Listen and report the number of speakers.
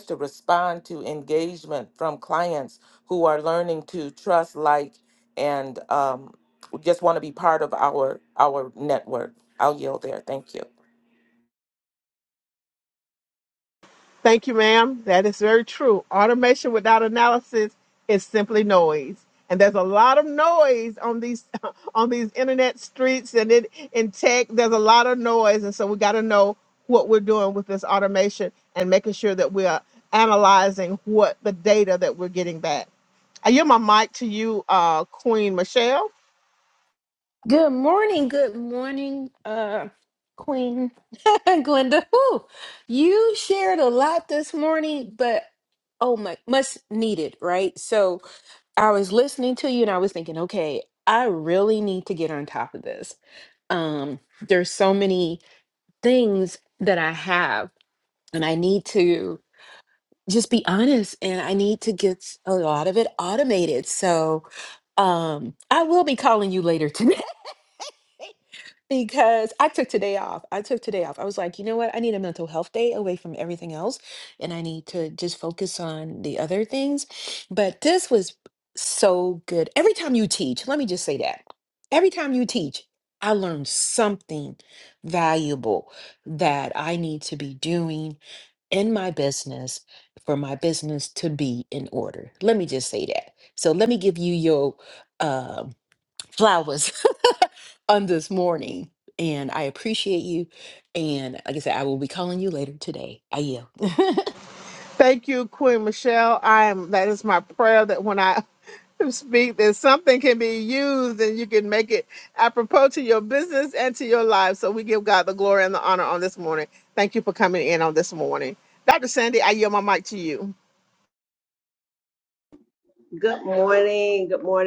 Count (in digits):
4